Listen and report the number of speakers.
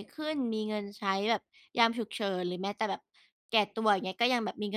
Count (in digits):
1